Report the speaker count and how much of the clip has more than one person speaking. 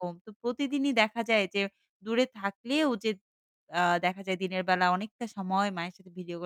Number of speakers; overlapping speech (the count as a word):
one, no overlap